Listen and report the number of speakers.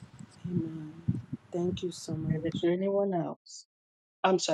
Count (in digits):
2